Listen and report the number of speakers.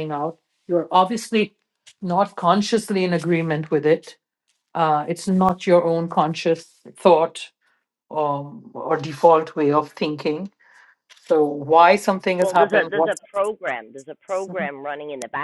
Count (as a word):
two